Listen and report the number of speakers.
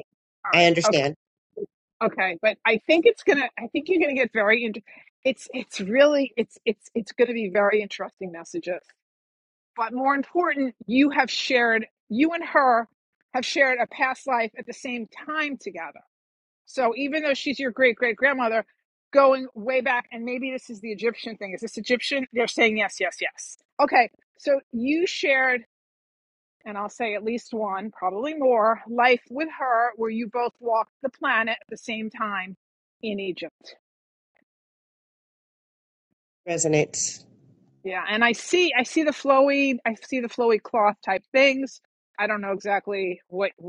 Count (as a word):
two